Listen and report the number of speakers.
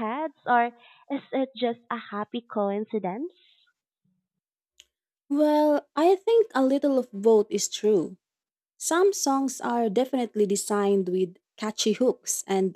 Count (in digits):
2